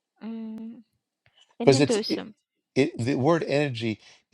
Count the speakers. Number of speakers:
two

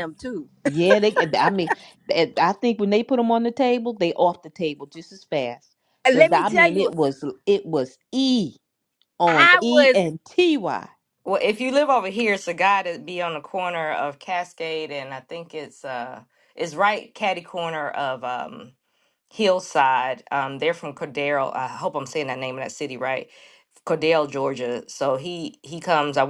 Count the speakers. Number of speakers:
three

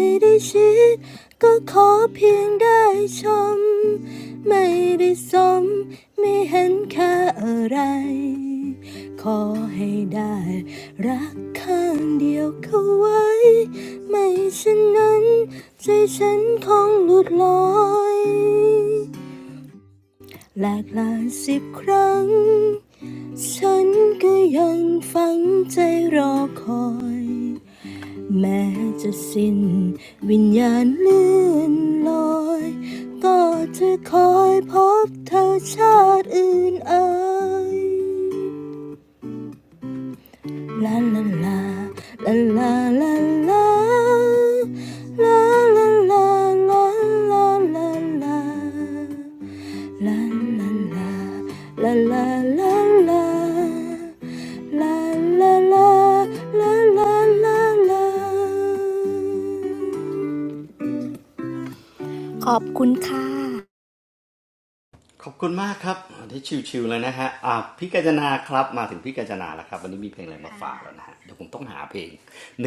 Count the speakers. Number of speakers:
two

